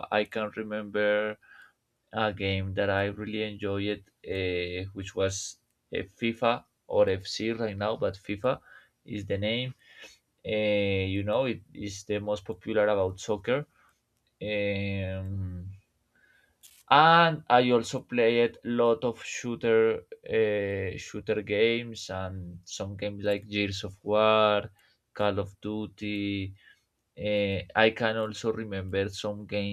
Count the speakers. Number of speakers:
one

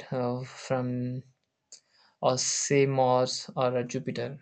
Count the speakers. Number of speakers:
one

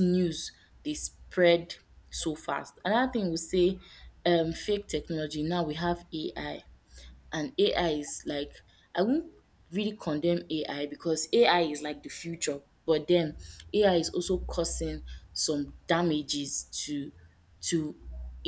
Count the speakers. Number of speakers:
one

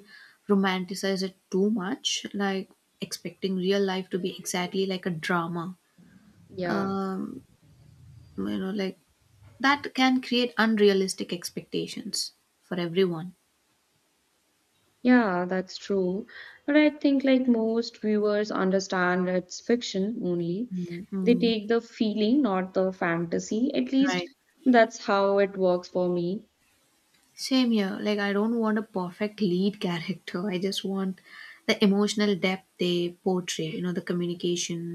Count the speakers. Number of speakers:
two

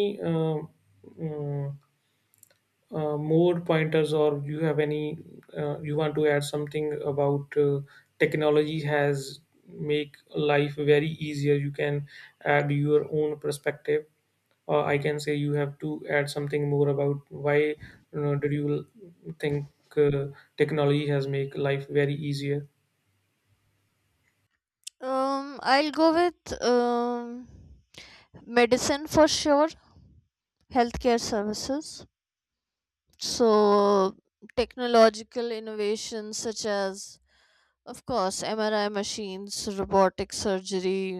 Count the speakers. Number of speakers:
two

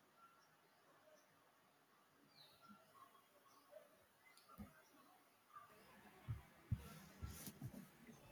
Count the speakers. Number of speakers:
zero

